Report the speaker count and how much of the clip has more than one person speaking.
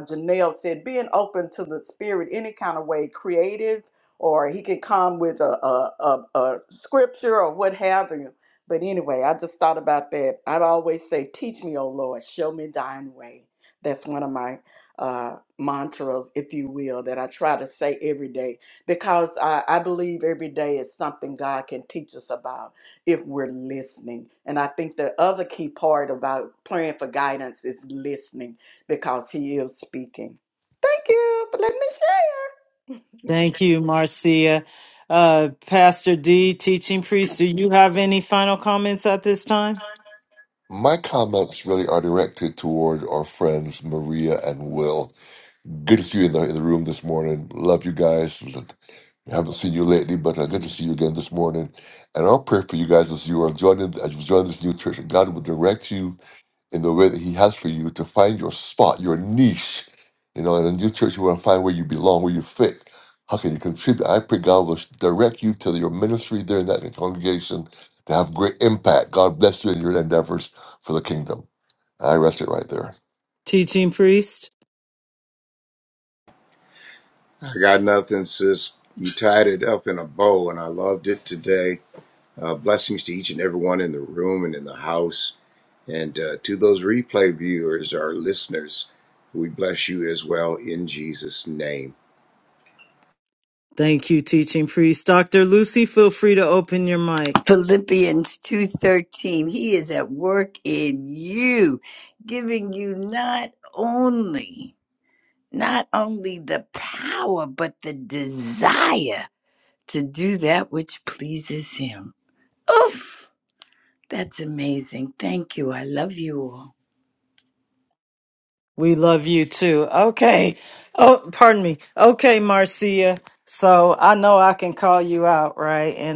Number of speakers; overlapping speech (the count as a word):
five, no overlap